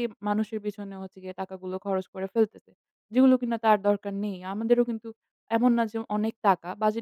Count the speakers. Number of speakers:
1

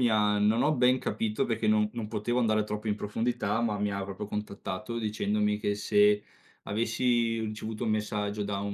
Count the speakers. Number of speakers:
1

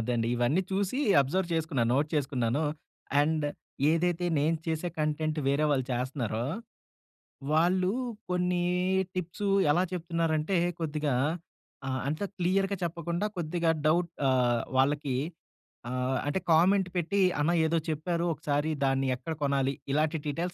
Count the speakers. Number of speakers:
1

